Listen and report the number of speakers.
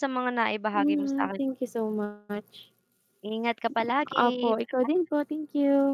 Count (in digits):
2